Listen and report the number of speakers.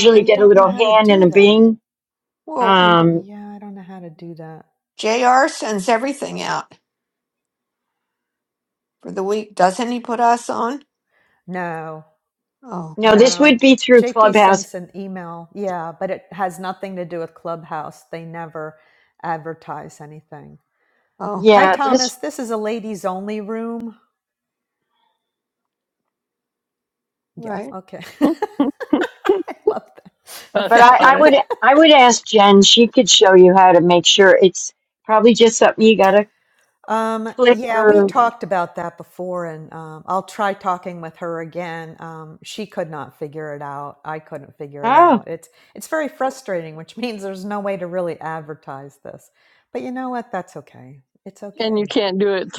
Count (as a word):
four